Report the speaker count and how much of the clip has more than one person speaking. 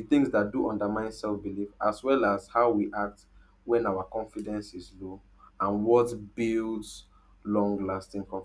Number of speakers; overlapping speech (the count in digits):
1, no overlap